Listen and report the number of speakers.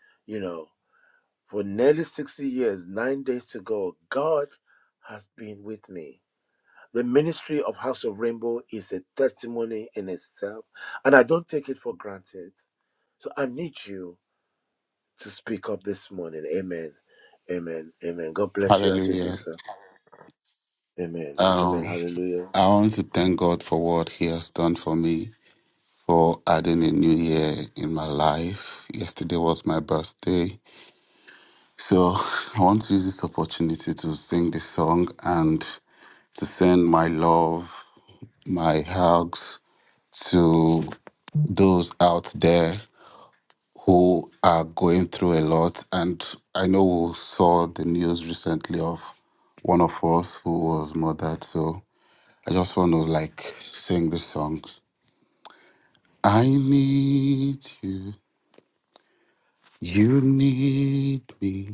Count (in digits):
2